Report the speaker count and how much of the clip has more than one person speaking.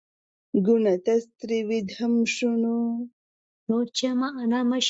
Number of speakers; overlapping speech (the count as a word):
two, no overlap